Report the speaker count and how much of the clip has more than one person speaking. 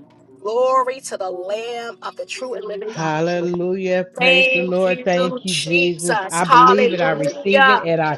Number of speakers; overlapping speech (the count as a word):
two, about 44%